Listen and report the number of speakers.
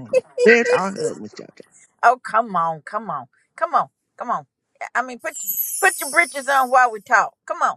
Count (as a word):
two